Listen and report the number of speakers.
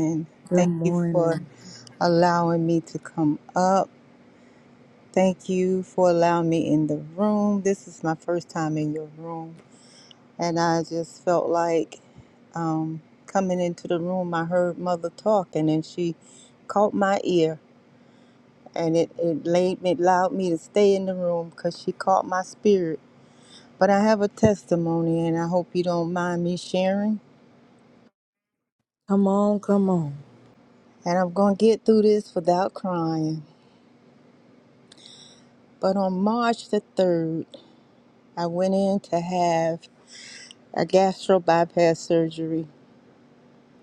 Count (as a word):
two